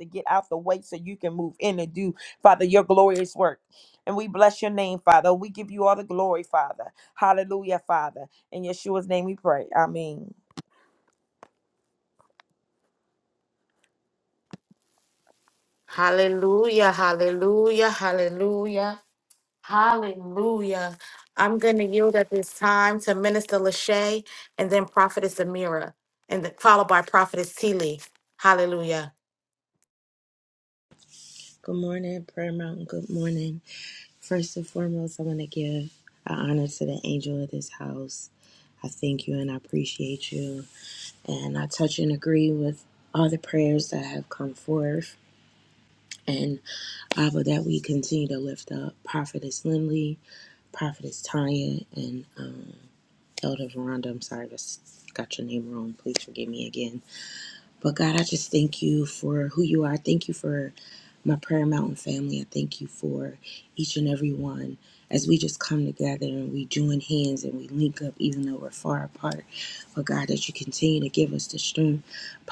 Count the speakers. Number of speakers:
3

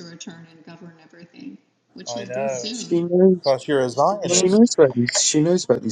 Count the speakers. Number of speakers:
3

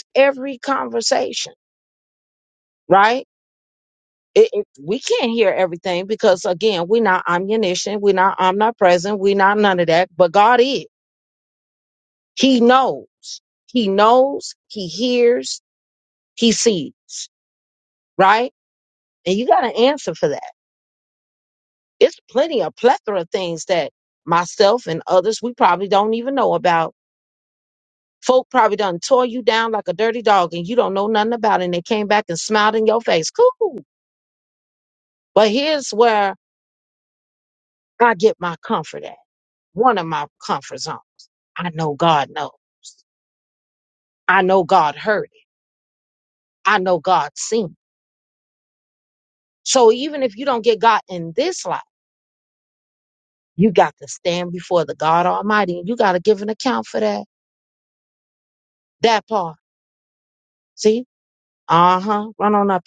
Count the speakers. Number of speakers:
1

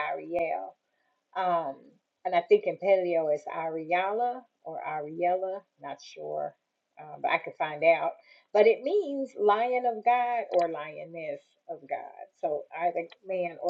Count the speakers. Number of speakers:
1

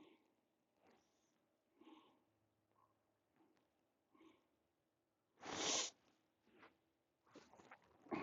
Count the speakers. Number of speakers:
0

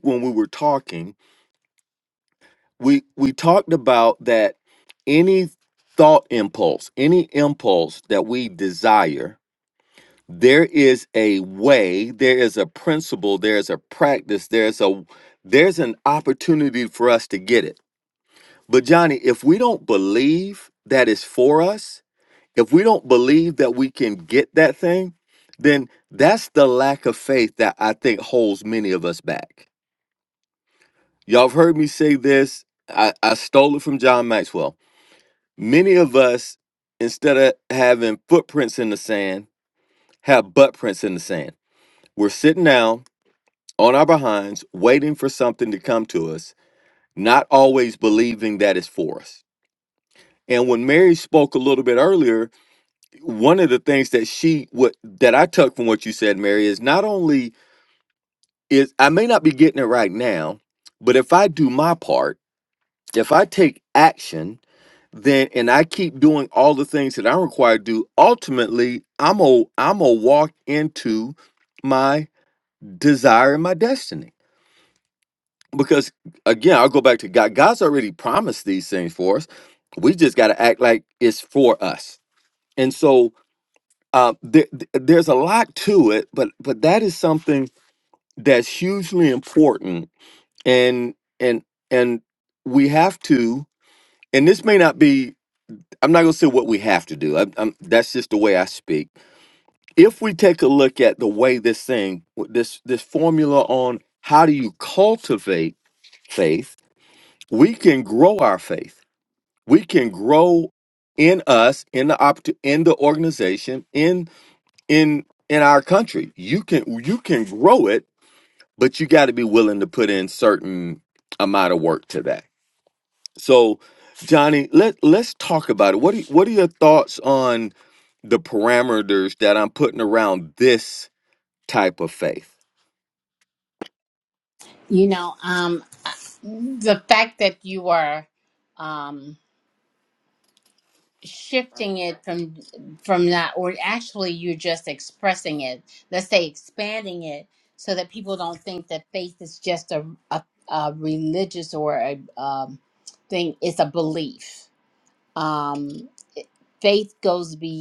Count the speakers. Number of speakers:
2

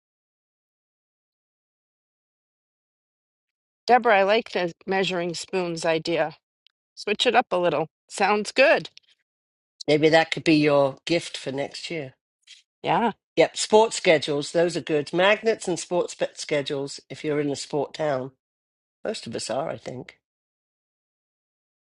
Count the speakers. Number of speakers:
2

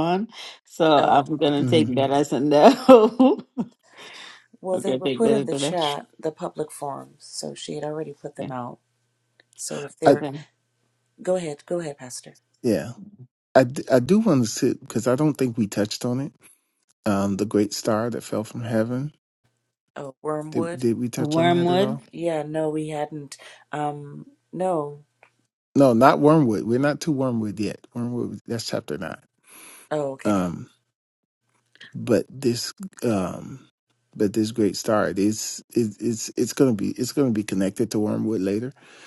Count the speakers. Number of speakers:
3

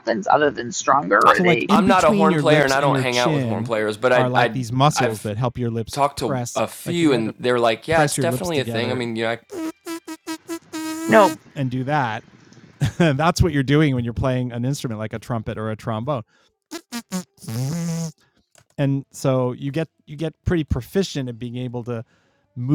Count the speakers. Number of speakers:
3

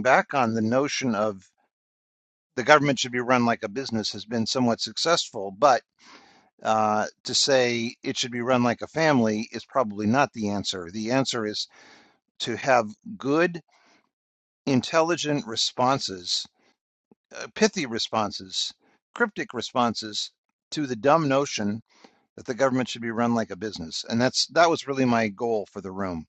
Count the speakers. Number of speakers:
1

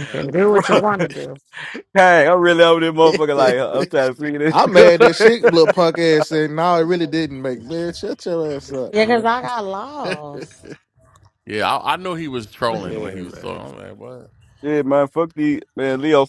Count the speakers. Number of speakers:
5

